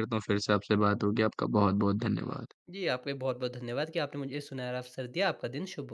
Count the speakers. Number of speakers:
two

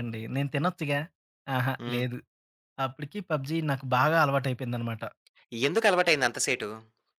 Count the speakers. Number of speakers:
two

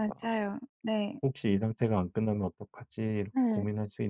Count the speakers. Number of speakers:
two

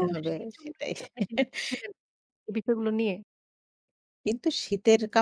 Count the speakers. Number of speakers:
two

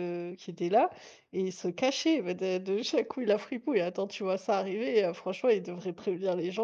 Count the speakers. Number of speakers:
one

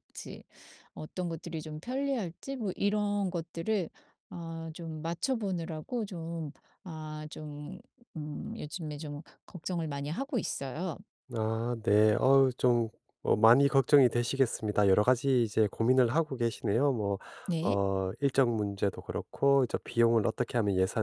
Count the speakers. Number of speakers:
two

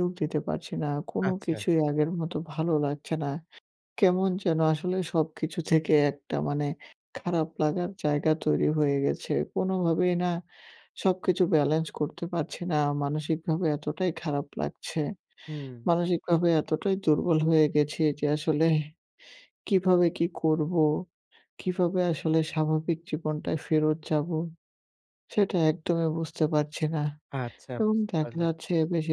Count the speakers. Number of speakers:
two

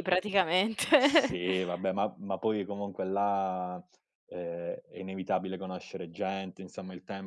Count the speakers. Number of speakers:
two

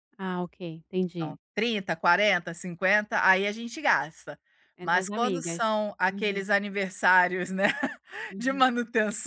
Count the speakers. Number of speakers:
two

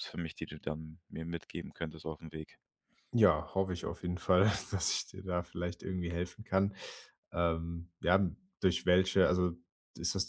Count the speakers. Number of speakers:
two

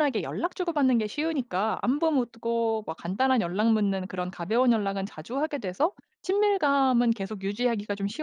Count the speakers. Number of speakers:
one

